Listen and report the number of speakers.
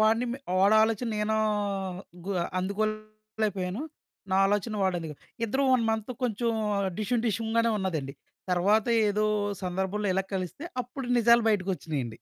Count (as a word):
one